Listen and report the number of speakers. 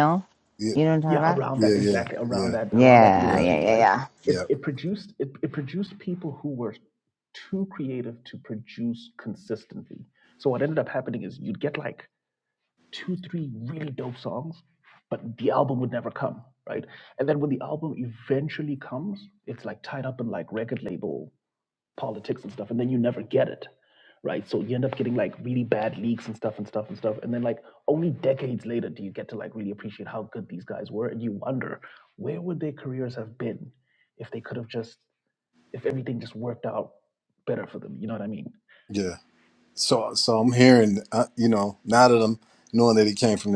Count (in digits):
3